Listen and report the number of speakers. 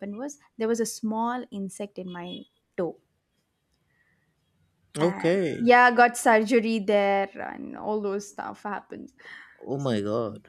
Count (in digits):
2